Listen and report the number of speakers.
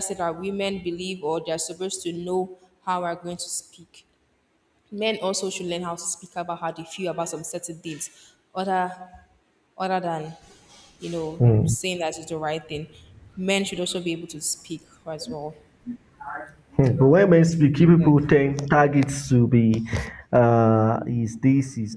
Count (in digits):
2